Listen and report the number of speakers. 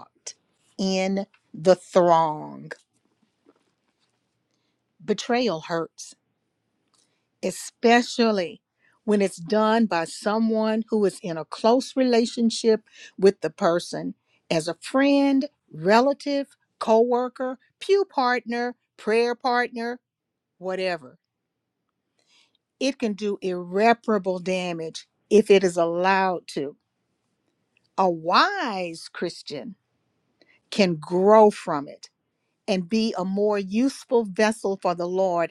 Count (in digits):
1